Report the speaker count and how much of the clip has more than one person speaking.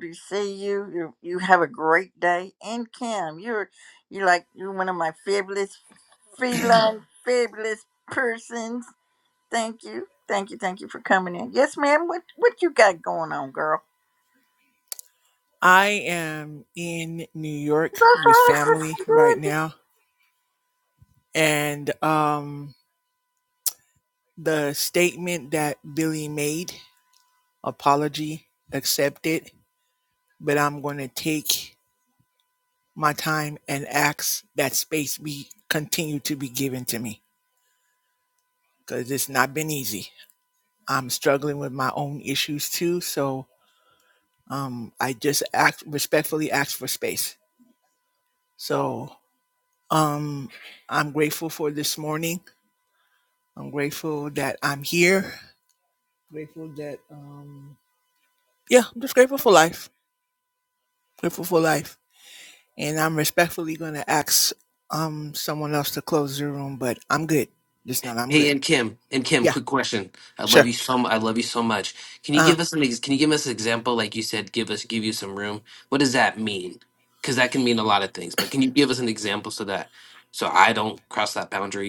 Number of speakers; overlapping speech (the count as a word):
three, about 3%